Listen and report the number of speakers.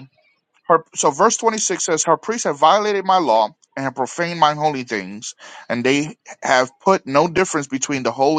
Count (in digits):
1